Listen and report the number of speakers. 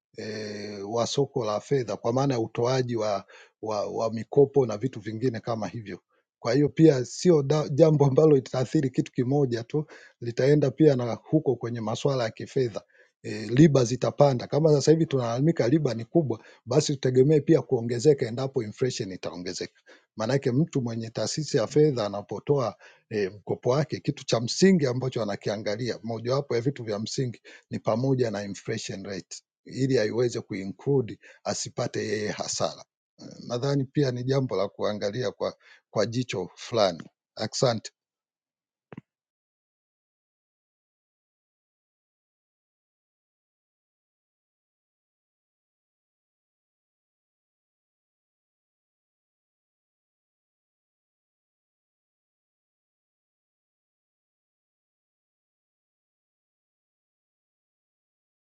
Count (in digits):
1